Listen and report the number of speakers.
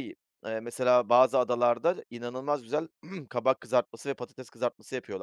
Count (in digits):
1